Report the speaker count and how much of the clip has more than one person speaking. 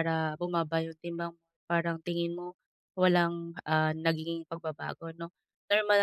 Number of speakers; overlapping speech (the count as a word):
one, no overlap